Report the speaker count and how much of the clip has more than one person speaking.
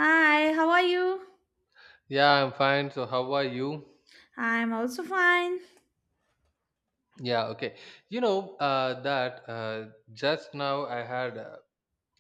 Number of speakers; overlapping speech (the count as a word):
two, no overlap